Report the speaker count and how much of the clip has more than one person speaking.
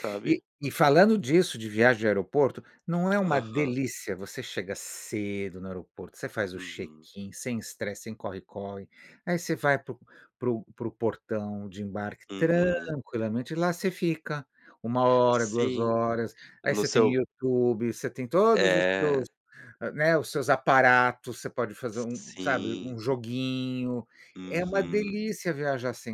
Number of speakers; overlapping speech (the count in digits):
2, about 18%